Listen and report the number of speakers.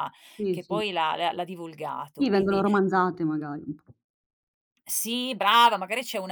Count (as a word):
two